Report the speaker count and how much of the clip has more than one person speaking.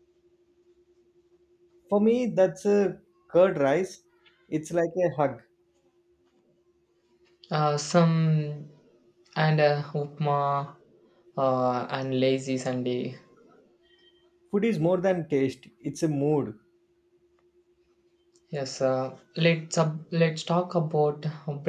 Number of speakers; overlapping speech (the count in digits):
2, no overlap